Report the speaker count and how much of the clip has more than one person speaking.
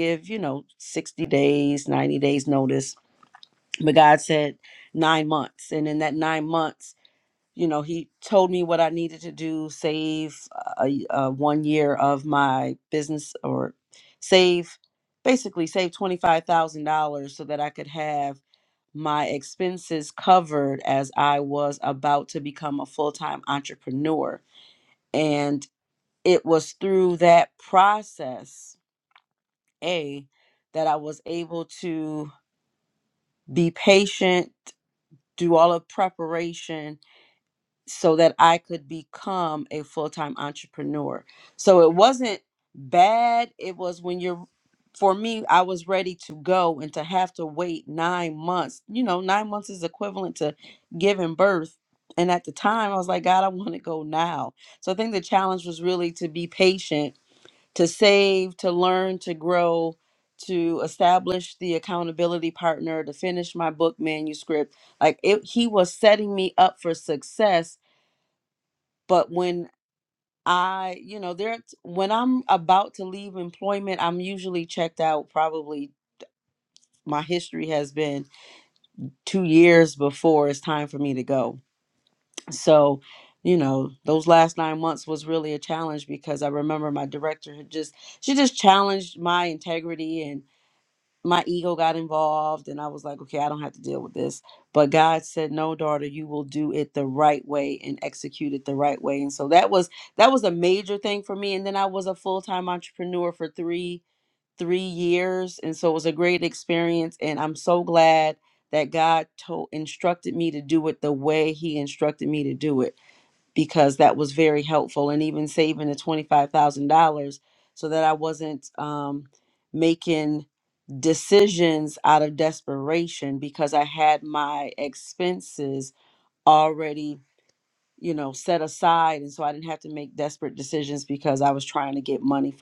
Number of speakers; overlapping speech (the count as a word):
one, no overlap